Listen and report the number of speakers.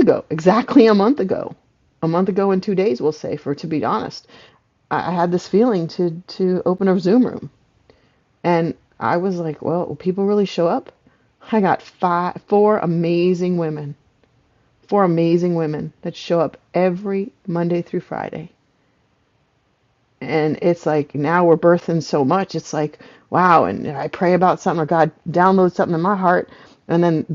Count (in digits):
1